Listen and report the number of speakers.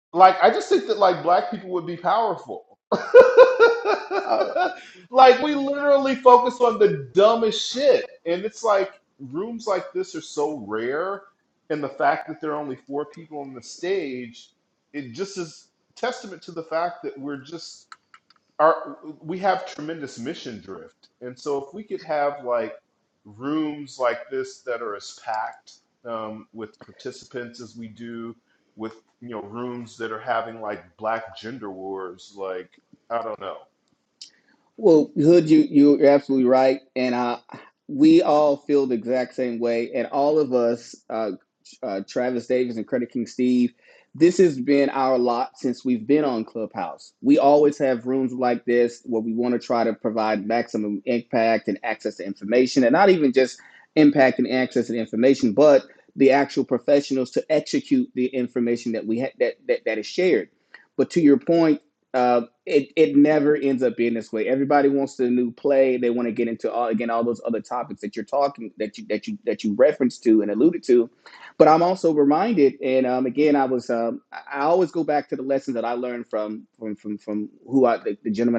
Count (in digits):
2